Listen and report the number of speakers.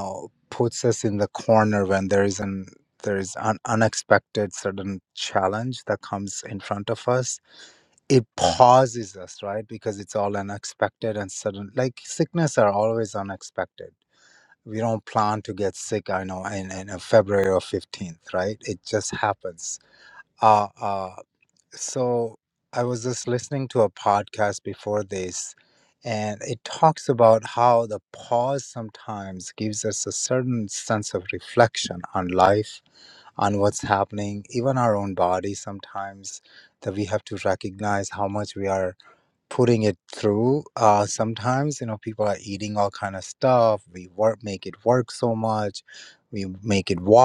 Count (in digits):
1